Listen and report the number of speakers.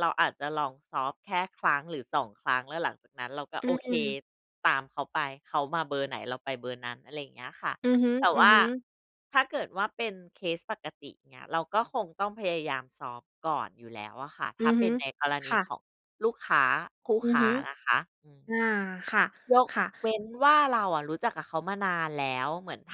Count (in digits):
2